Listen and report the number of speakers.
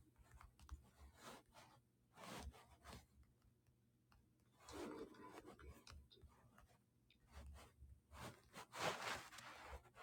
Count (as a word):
zero